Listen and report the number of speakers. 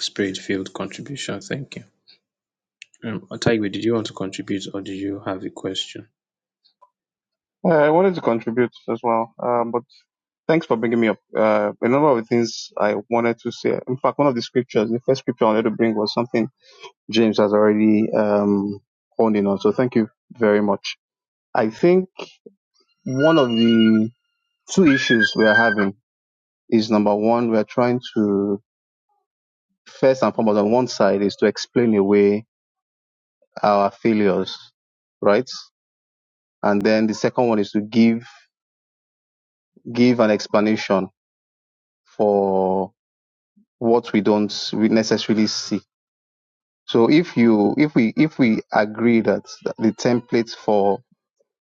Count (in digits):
2